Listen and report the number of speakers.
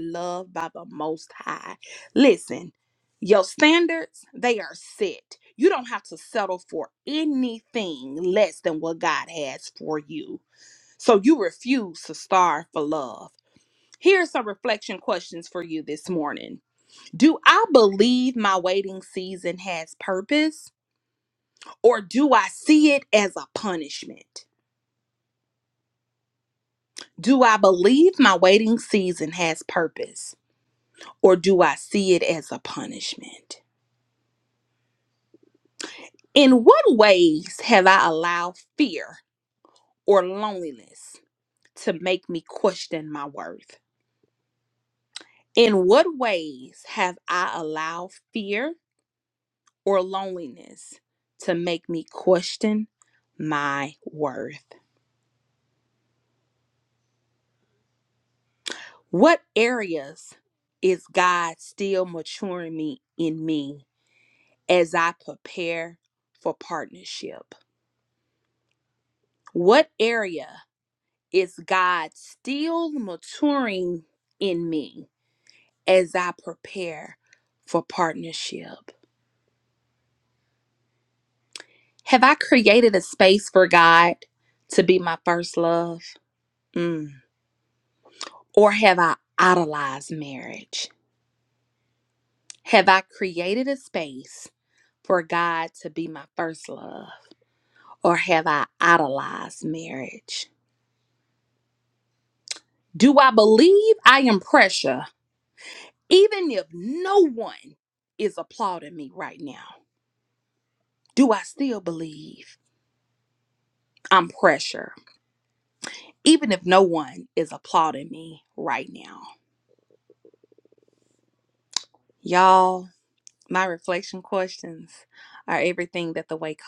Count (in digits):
1